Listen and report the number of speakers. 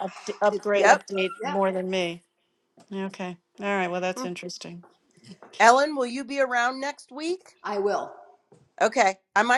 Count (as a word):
three